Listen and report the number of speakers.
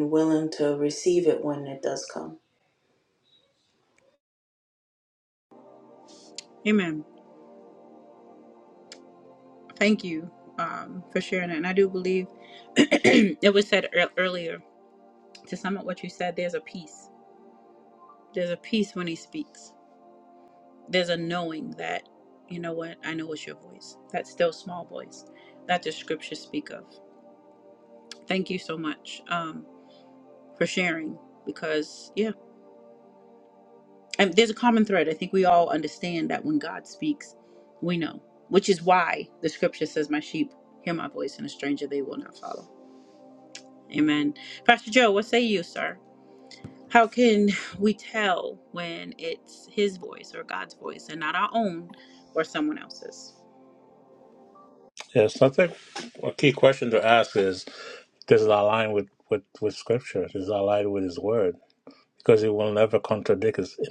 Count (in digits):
3